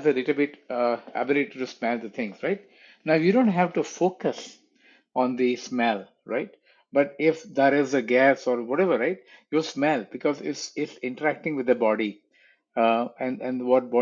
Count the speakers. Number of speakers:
1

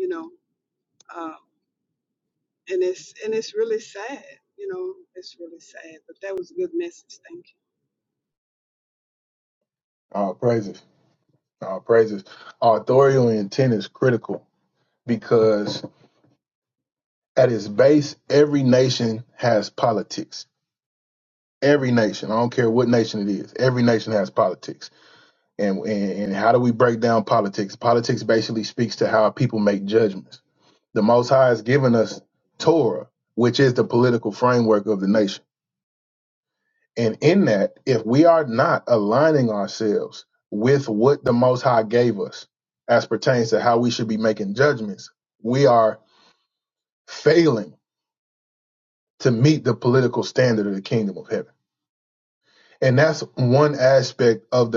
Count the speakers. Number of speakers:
2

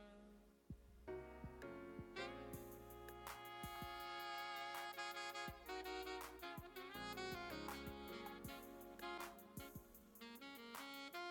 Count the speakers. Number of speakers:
0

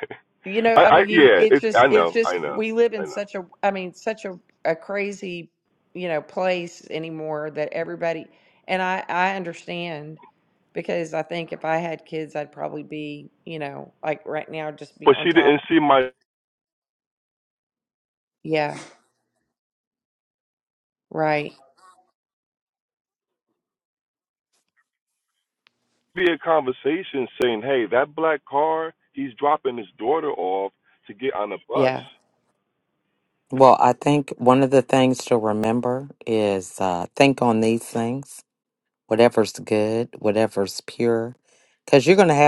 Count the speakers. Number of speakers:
3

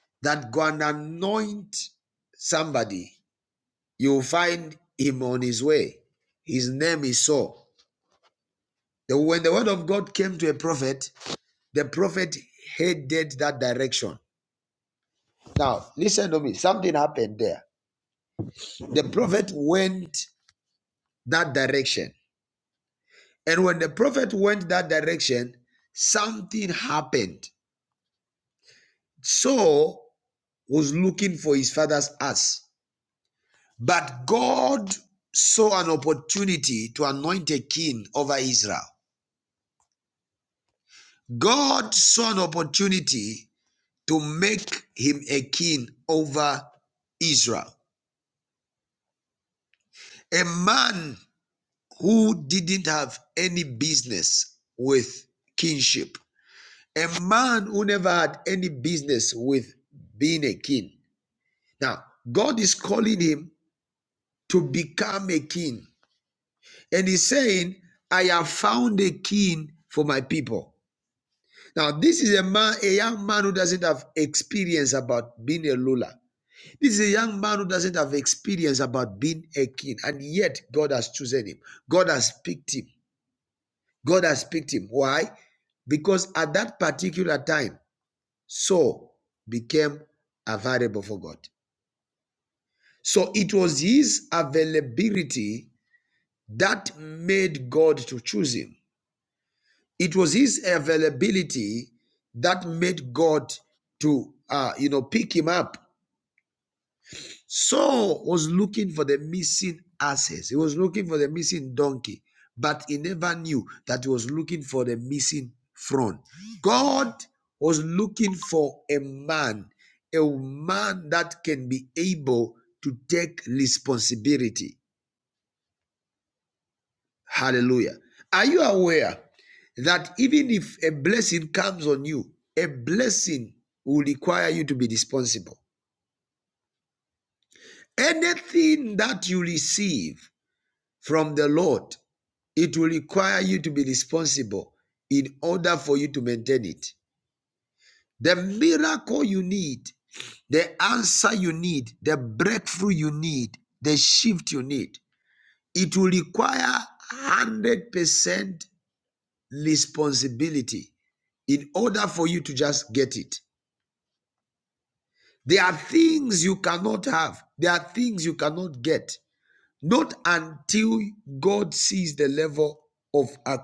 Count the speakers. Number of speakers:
1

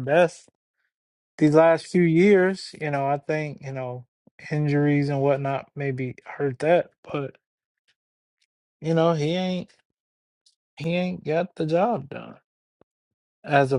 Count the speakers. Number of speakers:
1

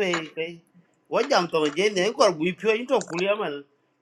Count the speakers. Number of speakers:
1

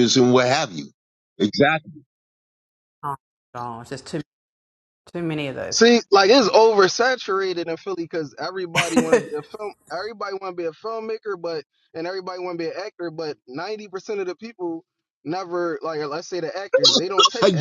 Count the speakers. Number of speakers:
3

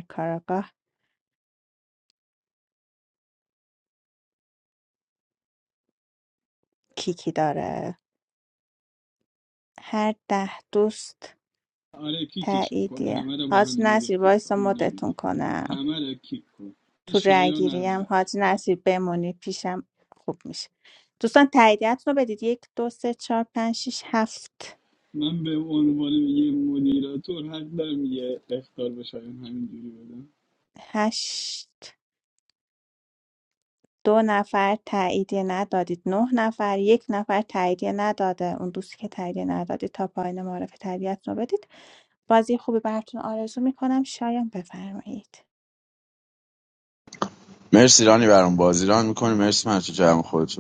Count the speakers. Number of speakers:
3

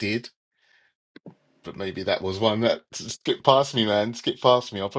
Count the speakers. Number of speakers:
1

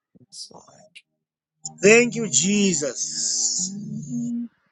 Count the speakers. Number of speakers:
2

